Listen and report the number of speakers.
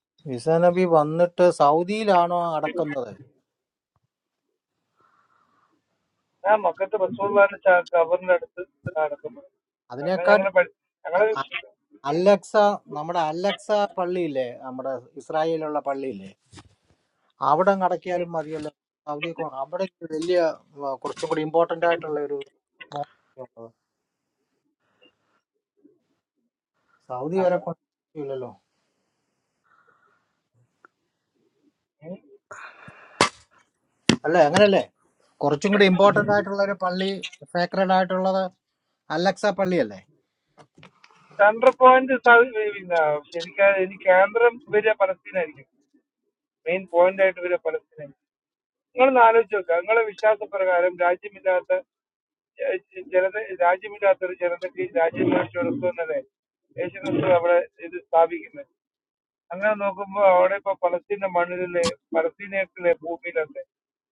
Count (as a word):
two